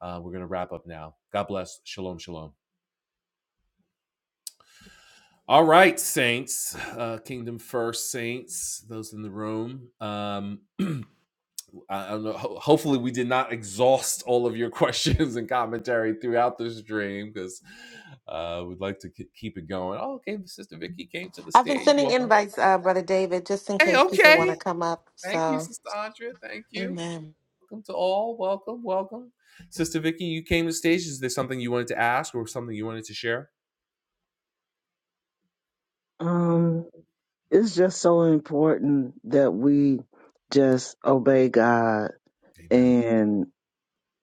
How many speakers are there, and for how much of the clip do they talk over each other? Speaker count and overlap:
three, about 5%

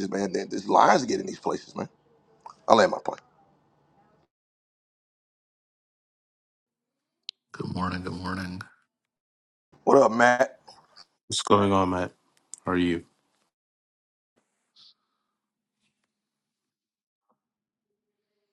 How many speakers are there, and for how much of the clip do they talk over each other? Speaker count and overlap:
three, no overlap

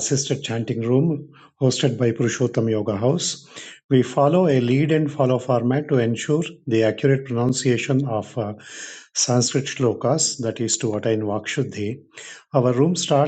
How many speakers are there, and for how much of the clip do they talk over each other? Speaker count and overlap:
one, no overlap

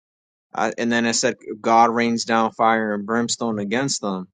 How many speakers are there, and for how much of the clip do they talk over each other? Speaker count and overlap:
one, no overlap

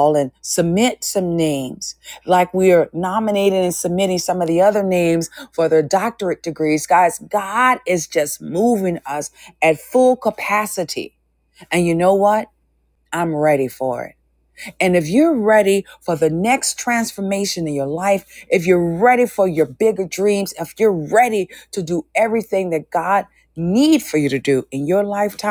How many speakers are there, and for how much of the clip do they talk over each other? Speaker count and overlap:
one, no overlap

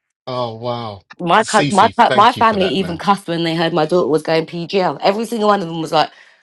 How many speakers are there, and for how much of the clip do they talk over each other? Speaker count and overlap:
two, about 25%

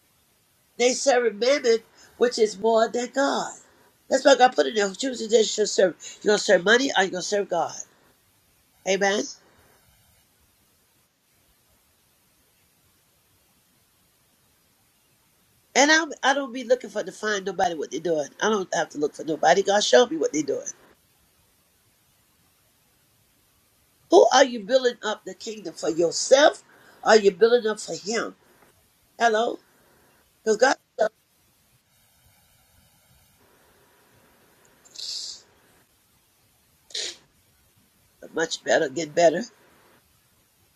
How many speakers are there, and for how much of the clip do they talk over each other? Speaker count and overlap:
one, no overlap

